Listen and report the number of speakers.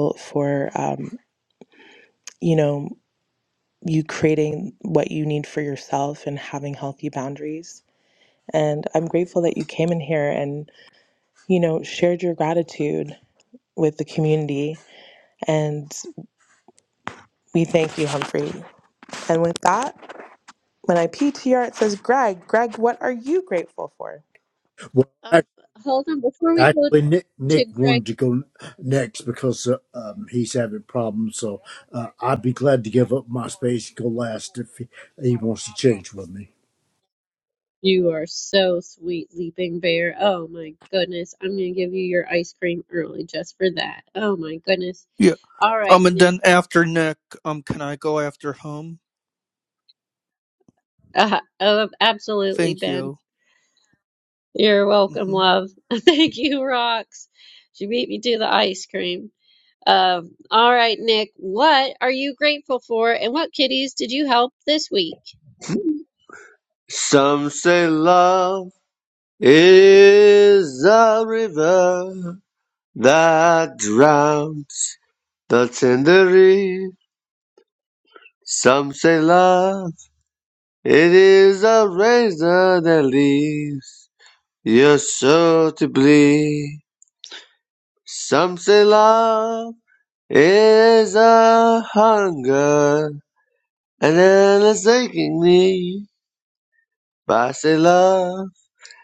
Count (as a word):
five